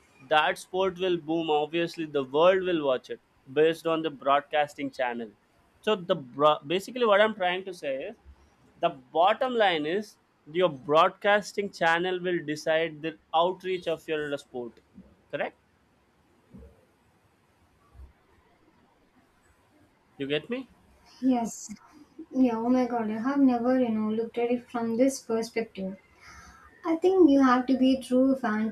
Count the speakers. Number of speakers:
2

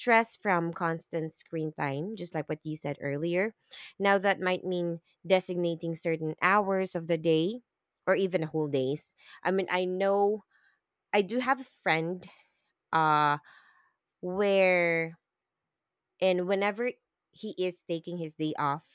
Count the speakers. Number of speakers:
1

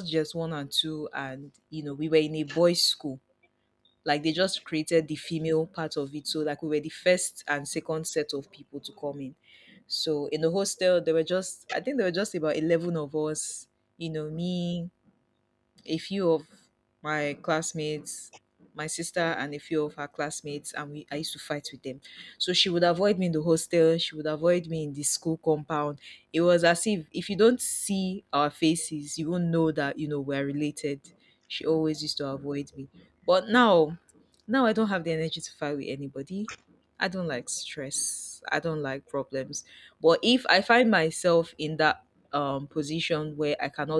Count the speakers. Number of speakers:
1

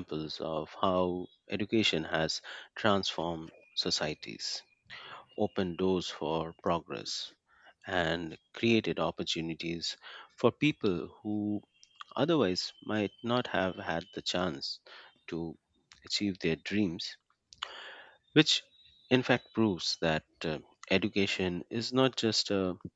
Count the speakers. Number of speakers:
1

